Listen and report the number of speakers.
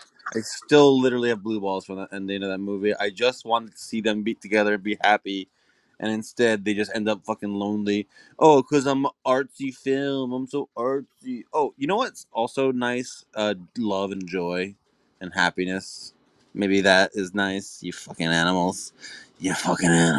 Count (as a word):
one